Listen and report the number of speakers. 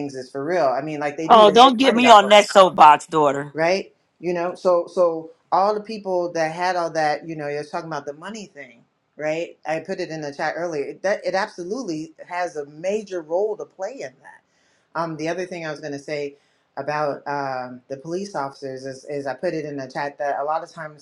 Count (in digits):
2